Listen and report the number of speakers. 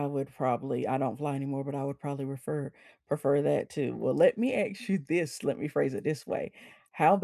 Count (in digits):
1